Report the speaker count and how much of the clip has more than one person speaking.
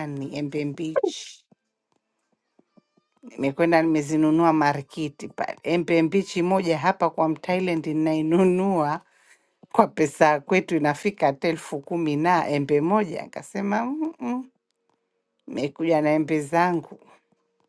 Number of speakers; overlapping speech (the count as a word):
one, no overlap